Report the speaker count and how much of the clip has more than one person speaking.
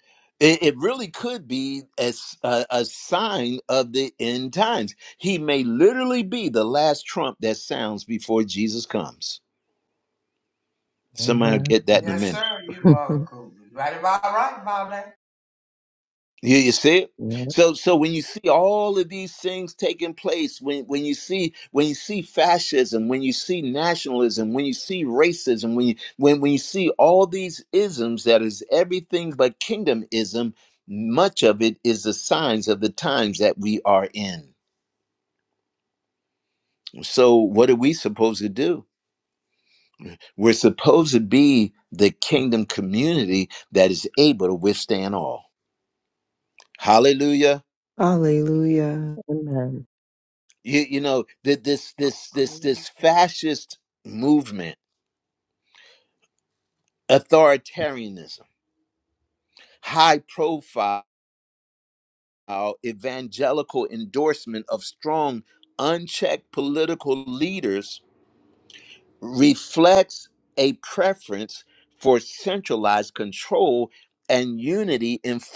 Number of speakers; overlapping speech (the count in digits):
4, about 2%